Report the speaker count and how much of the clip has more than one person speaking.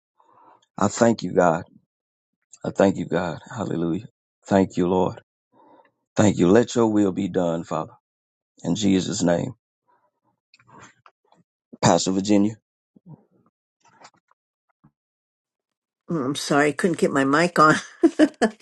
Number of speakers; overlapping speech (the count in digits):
2, no overlap